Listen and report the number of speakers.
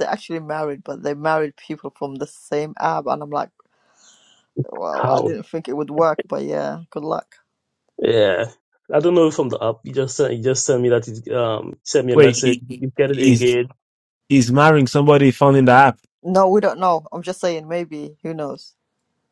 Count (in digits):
3